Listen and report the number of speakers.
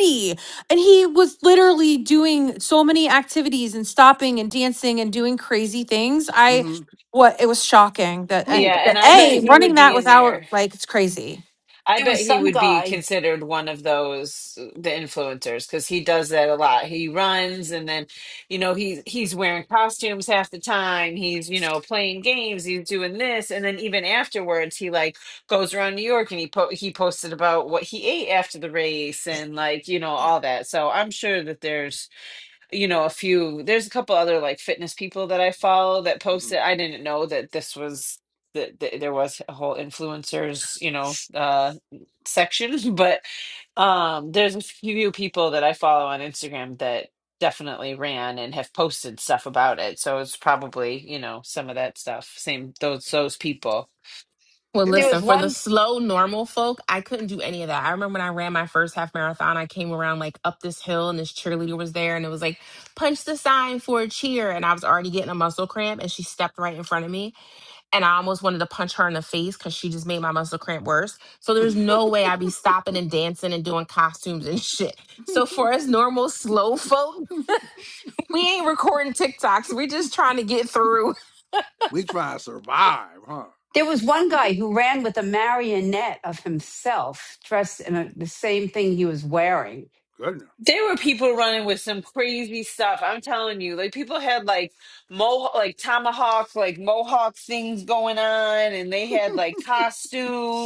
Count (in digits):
5